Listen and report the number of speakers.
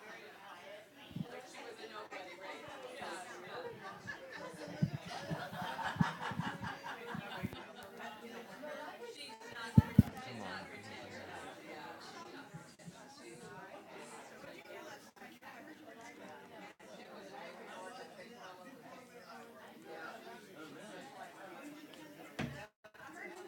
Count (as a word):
zero